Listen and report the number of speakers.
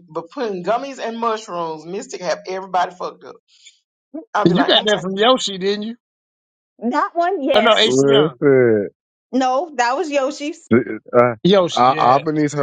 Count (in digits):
4